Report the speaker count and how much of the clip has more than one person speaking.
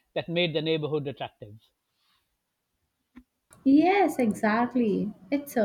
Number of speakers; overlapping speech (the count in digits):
2, no overlap